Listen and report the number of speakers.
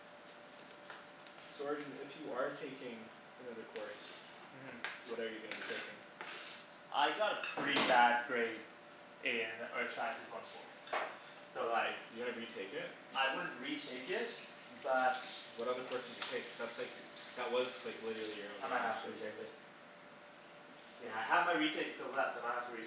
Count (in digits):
2